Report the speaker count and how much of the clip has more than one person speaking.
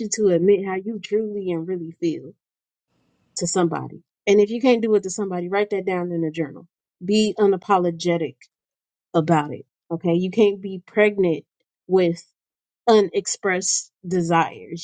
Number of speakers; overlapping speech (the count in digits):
1, no overlap